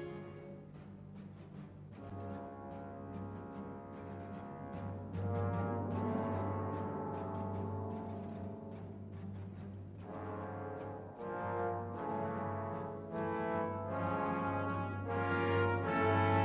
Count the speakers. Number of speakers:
zero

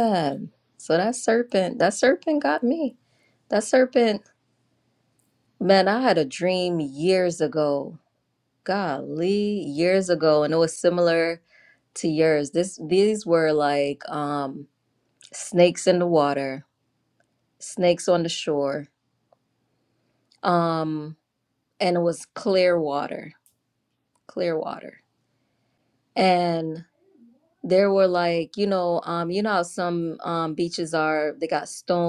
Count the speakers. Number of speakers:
one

